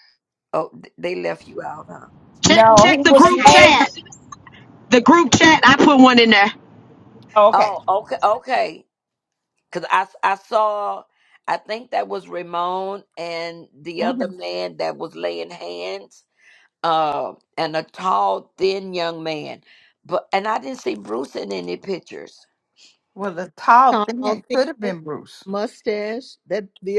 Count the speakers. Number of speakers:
4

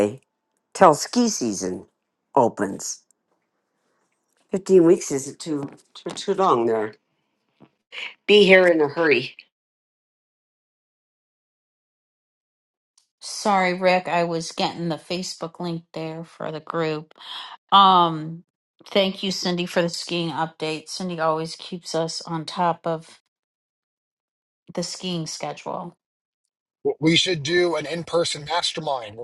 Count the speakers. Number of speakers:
3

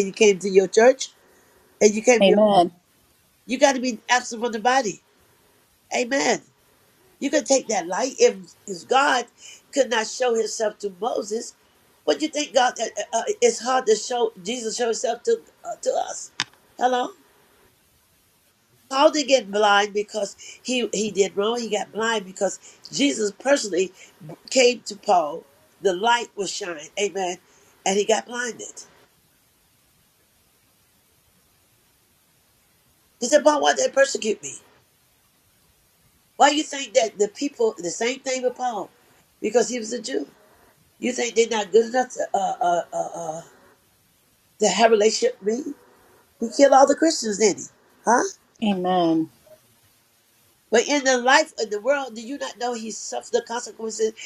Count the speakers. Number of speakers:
2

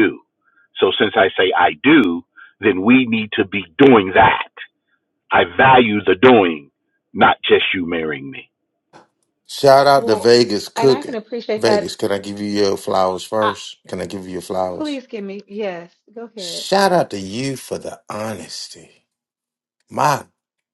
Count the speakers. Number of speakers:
3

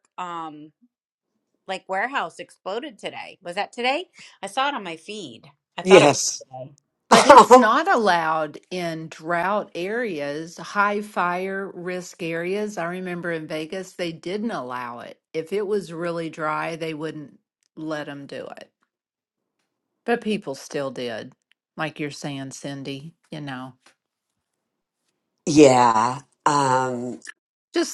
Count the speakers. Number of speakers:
3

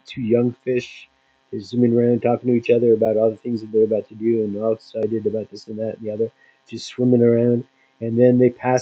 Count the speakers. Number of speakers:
1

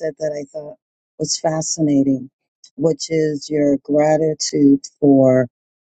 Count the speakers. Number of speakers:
1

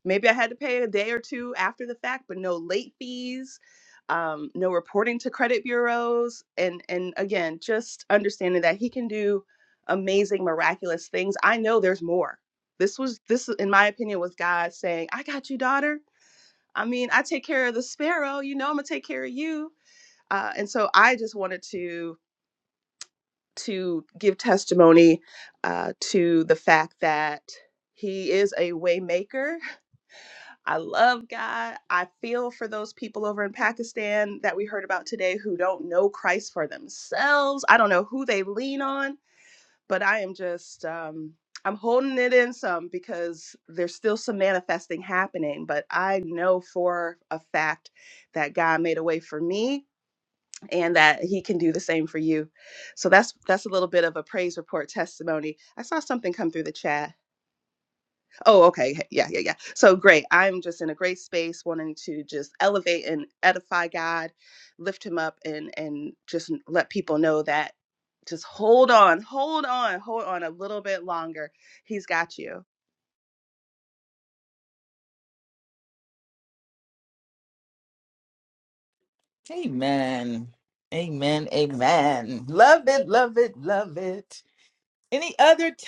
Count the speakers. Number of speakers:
2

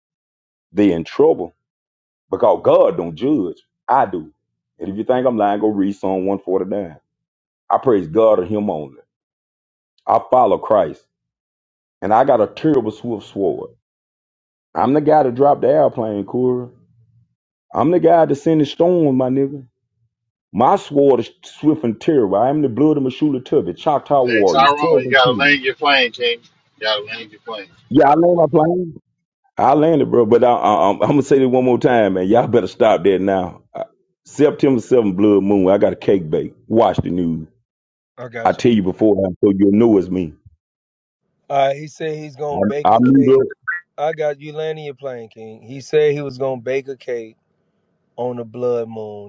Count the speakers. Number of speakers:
3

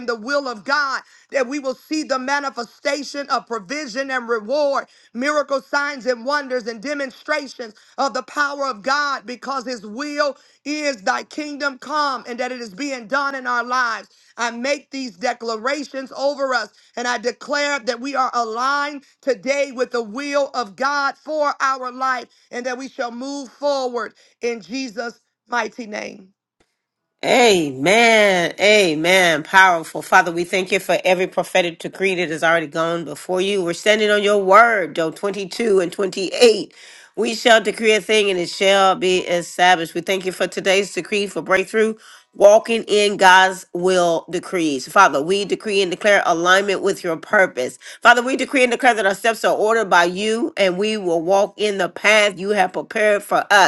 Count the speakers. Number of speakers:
2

